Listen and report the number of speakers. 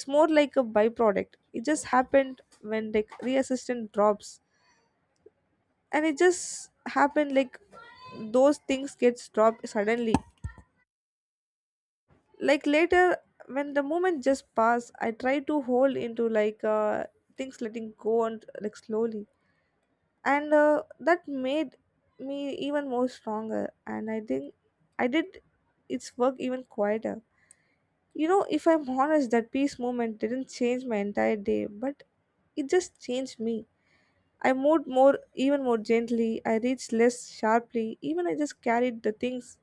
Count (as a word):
one